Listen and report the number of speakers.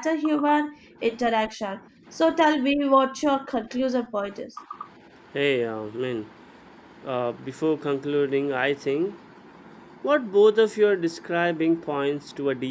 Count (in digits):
2